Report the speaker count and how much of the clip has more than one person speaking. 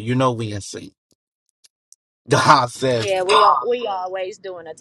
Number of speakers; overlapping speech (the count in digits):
2, about 2%